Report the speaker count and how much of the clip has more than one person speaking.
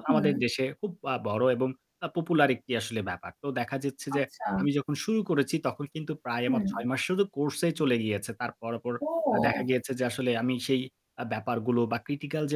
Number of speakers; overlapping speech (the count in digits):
2, about 11%